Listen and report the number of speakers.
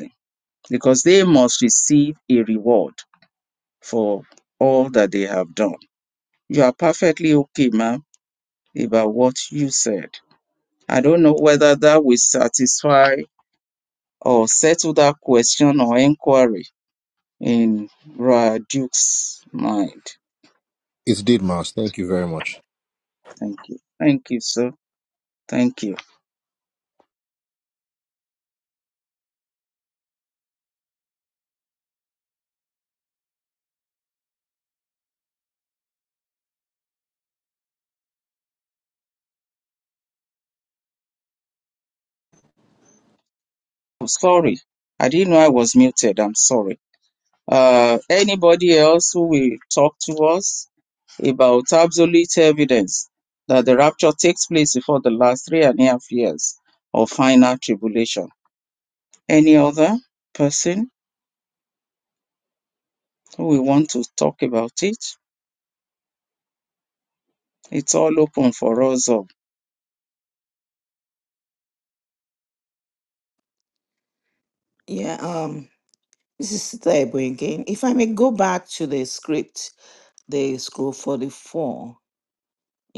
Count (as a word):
three